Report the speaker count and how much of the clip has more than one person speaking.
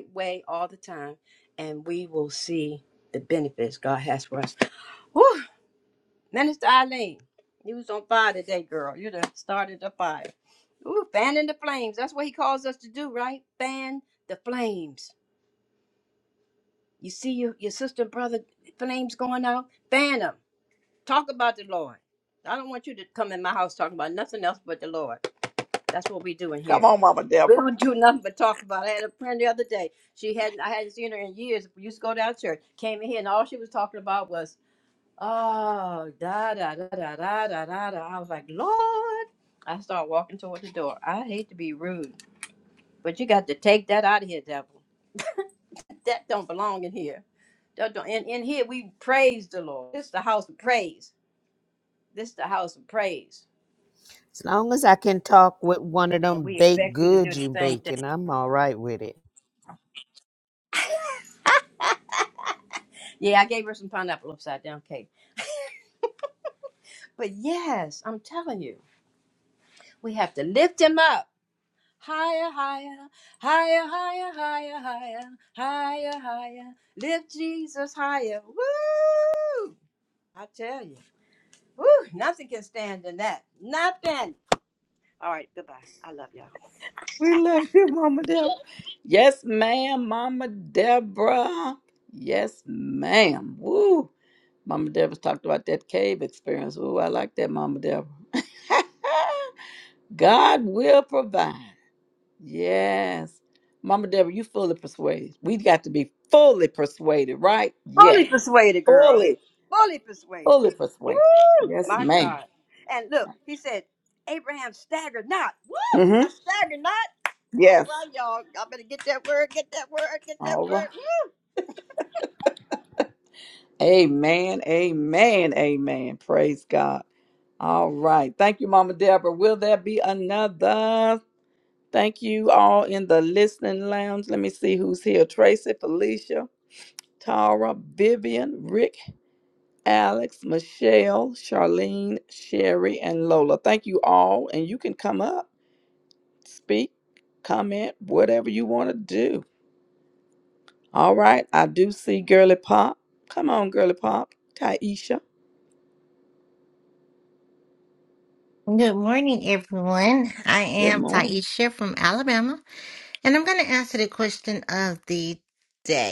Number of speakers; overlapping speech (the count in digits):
4, about 3%